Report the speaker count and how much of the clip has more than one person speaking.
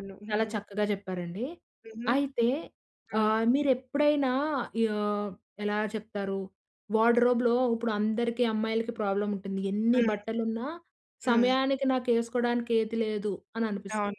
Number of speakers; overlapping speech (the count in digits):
2, about 7%